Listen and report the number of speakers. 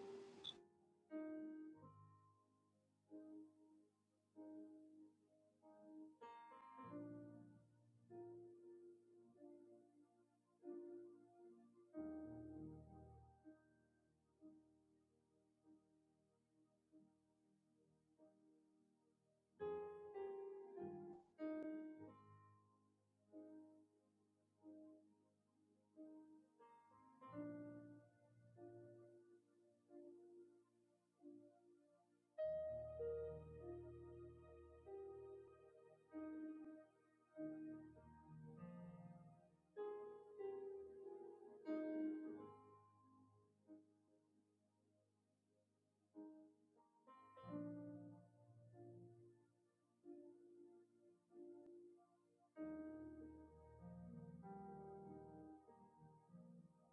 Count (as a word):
zero